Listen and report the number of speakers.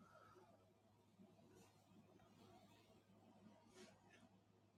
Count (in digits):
0